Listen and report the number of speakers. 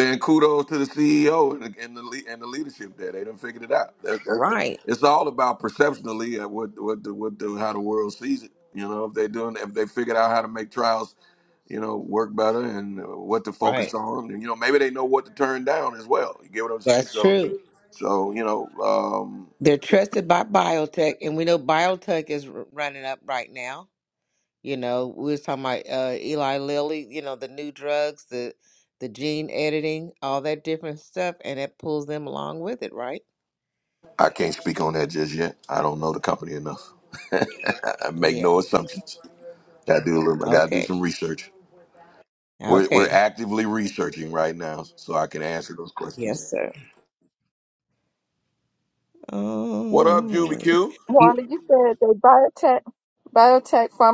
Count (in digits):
3